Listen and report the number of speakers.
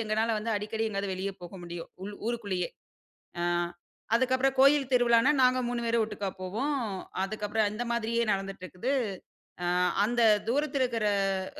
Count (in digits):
1